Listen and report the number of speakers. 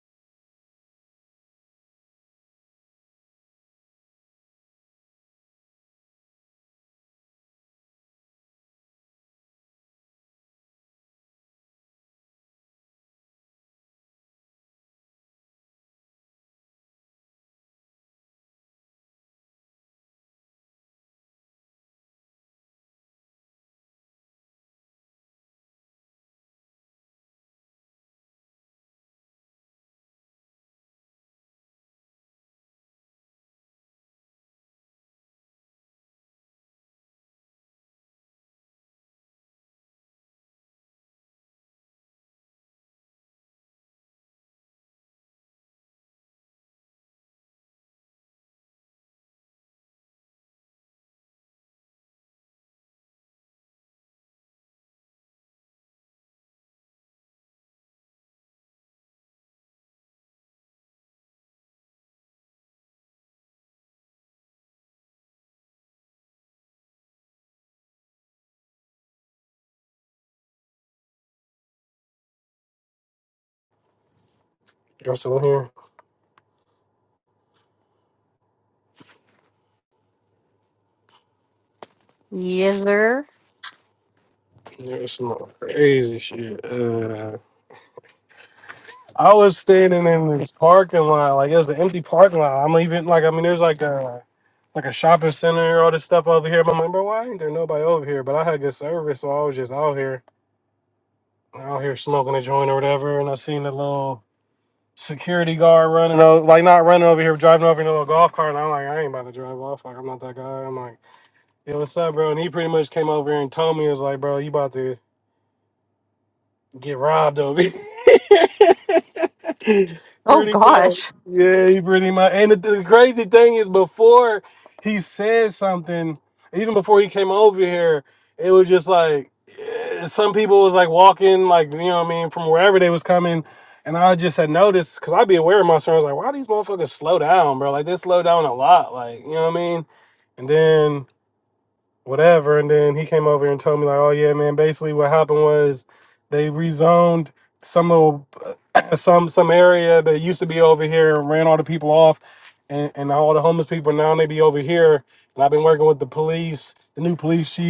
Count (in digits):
2